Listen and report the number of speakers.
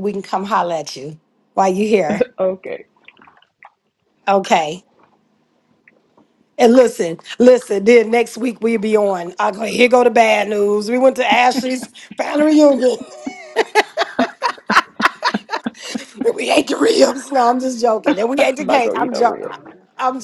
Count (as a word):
two